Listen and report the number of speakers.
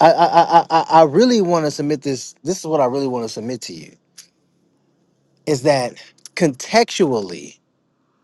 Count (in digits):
1